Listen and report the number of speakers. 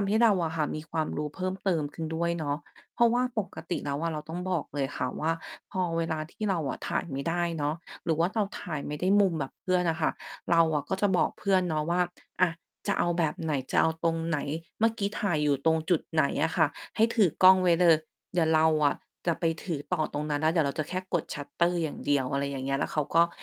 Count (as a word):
one